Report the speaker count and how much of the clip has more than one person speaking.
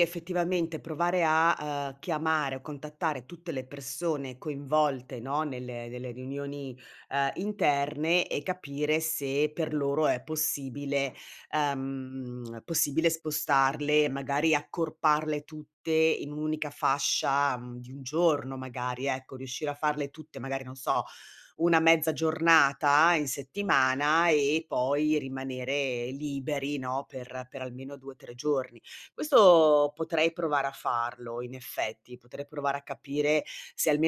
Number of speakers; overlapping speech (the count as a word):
one, no overlap